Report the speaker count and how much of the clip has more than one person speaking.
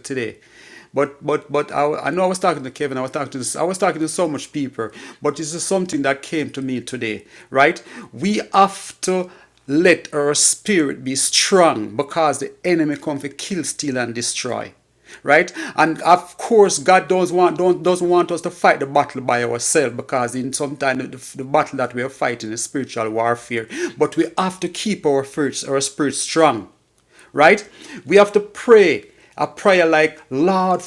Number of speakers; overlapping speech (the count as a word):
one, no overlap